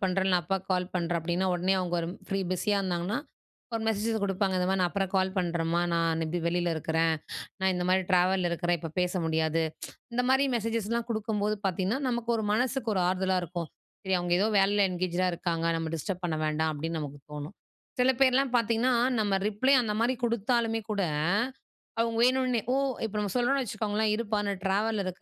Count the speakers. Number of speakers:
one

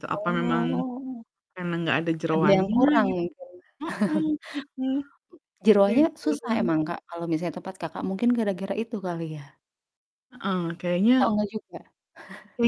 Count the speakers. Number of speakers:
two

